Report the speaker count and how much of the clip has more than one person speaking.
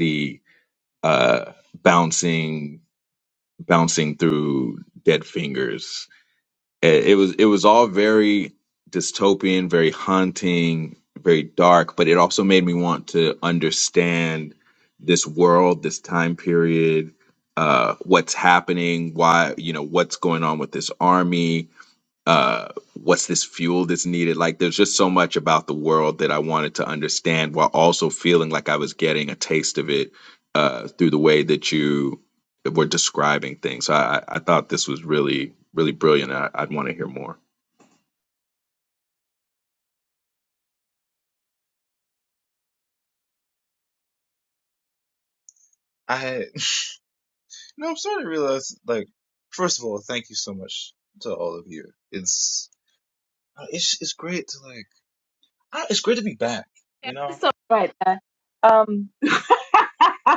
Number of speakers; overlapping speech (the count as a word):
three, under 1%